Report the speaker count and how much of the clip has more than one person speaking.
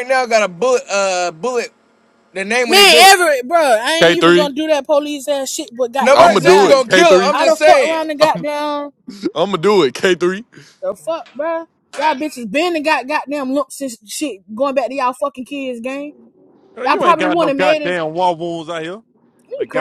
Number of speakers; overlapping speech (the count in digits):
4, about 22%